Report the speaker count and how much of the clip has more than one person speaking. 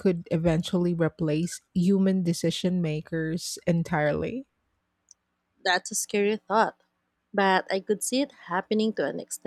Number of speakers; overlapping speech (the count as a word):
two, no overlap